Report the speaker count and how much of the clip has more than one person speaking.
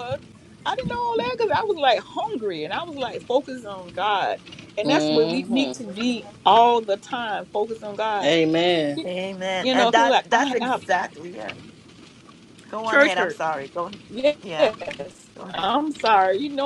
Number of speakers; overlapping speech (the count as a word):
three, about 17%